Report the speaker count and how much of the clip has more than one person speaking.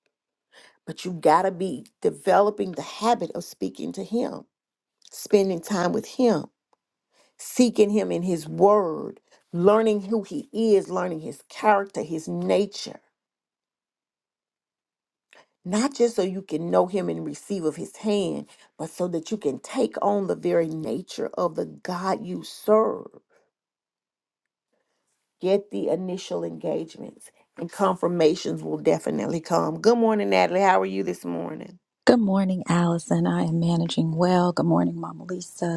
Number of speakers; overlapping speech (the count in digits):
2, no overlap